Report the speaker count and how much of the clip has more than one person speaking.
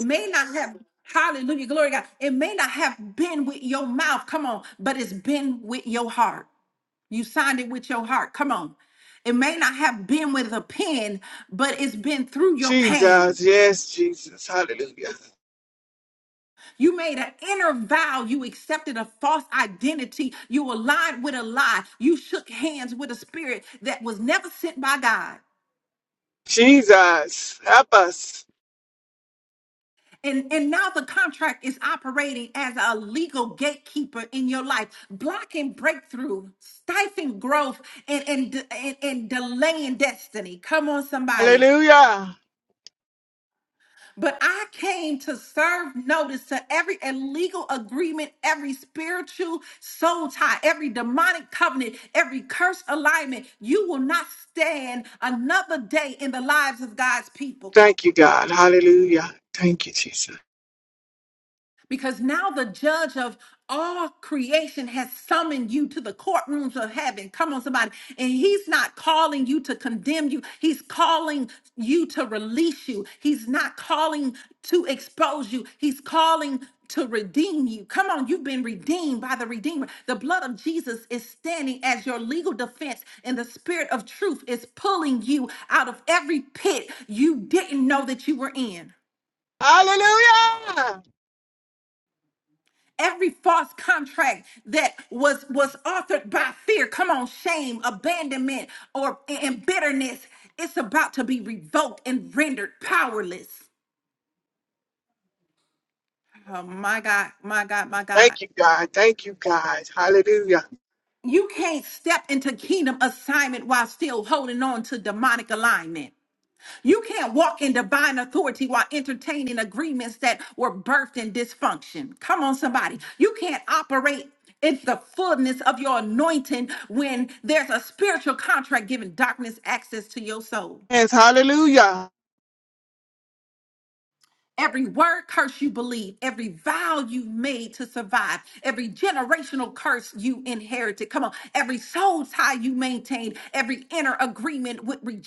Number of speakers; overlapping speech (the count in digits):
2, about 1%